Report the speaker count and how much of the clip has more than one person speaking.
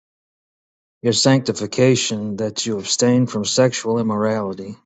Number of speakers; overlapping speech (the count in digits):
1, no overlap